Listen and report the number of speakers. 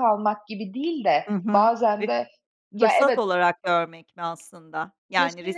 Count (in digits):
2